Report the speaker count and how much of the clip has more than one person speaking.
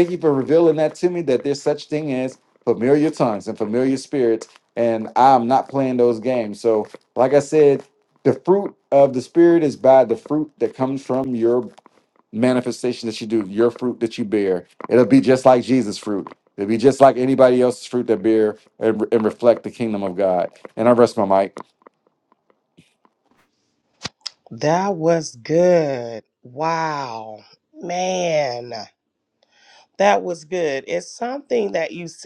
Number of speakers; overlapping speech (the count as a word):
two, no overlap